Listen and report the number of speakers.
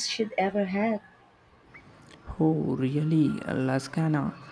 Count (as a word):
two